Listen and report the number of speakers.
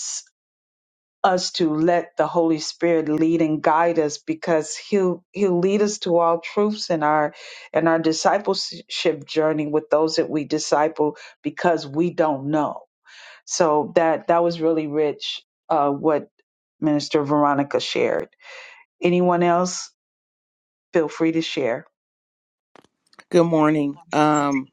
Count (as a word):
two